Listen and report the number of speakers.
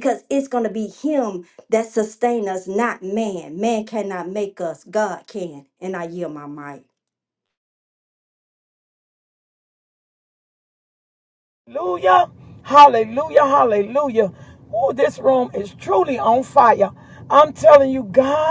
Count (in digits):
2